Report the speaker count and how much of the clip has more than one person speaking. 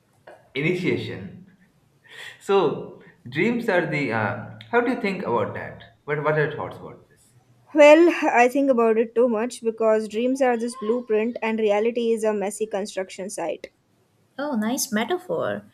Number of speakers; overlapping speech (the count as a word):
three, no overlap